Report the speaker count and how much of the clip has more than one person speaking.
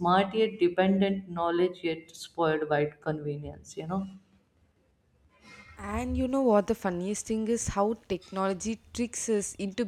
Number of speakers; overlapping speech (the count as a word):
two, no overlap